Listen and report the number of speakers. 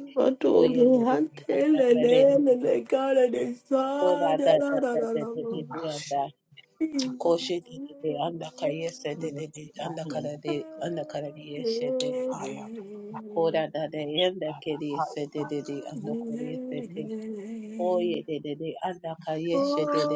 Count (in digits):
3